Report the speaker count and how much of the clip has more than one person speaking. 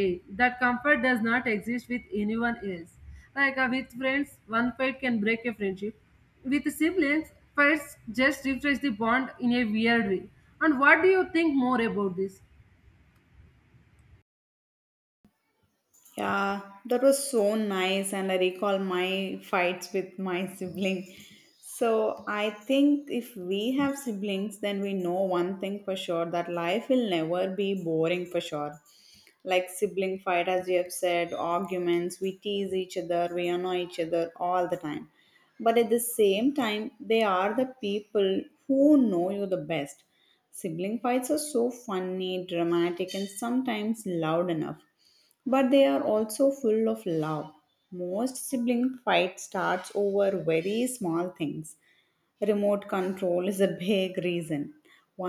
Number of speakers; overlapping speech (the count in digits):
2, no overlap